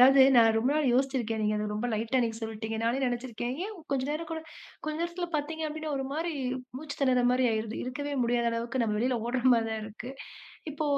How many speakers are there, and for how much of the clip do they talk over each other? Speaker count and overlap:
1, no overlap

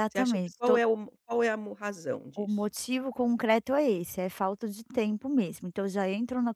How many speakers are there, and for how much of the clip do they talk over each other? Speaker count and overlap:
2, about 12%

